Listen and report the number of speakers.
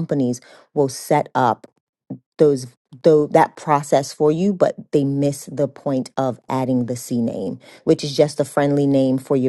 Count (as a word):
one